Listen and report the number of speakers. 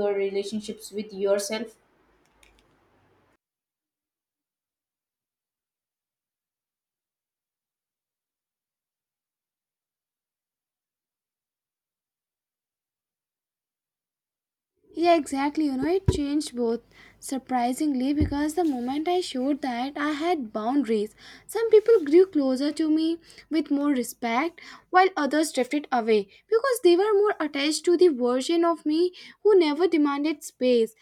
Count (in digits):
2